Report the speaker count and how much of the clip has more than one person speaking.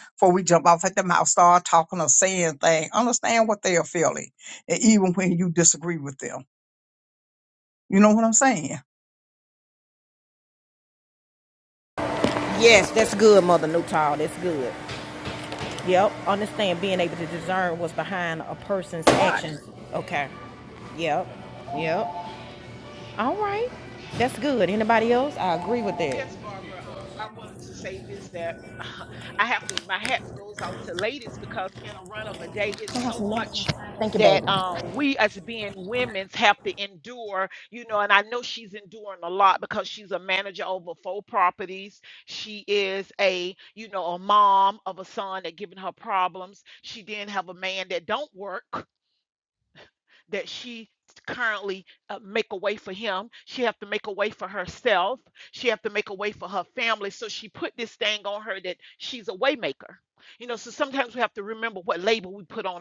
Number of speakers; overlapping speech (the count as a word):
three, about 1%